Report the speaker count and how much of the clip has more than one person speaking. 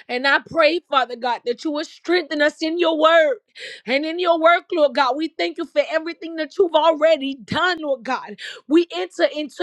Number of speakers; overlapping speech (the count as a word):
one, no overlap